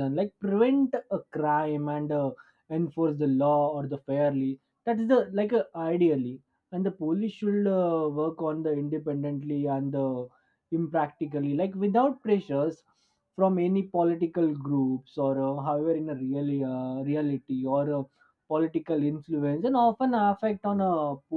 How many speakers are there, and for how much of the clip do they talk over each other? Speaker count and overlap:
one, no overlap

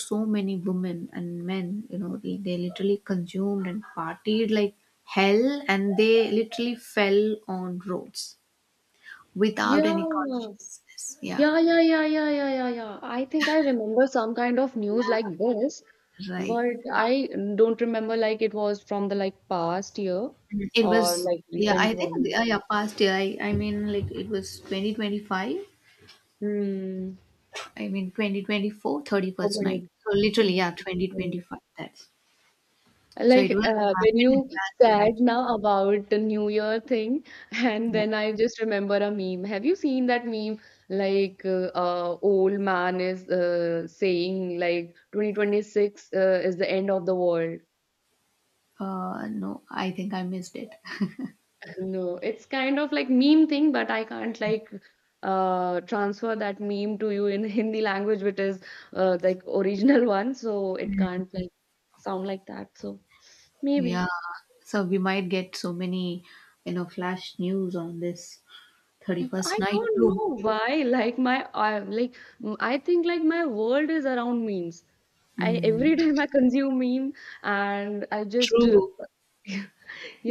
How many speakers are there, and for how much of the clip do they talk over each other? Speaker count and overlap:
two, about 8%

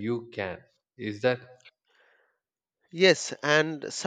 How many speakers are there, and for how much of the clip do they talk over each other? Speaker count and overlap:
two, no overlap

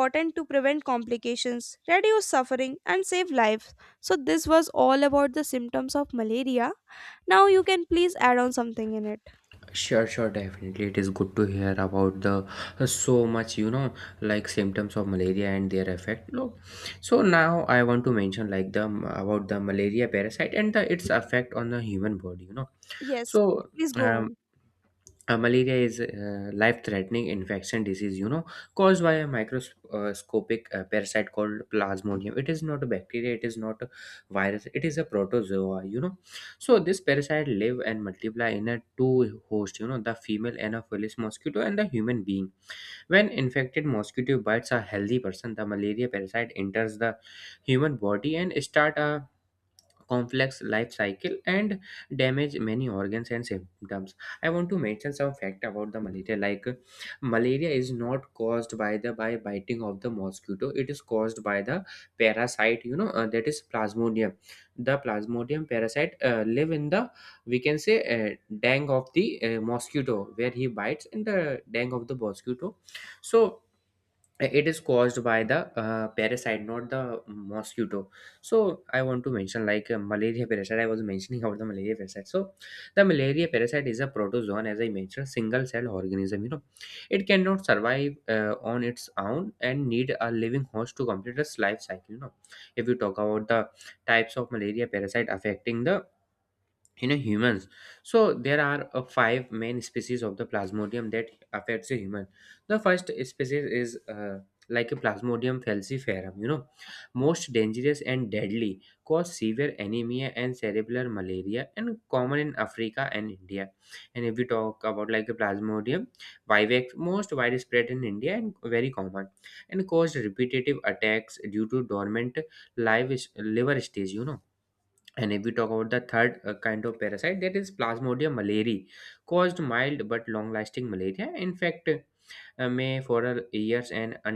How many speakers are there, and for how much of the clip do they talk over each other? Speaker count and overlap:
two, under 1%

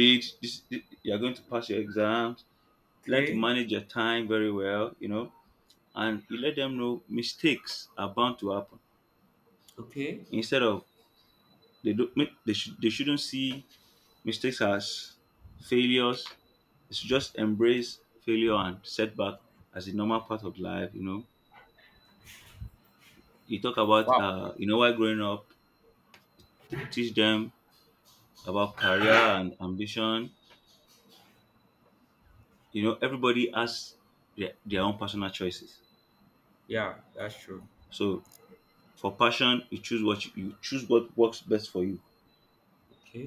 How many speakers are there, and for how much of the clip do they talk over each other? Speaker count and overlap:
two, about 2%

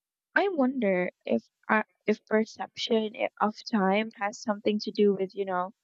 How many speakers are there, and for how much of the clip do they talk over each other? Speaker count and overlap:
one, no overlap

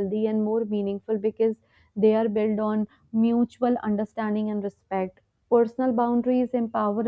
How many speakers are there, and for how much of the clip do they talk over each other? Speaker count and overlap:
one, no overlap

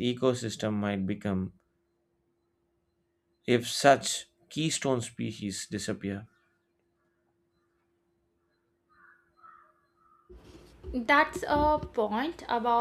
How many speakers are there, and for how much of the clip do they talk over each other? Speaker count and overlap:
two, no overlap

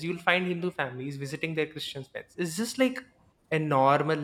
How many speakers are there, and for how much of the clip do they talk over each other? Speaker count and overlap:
one, no overlap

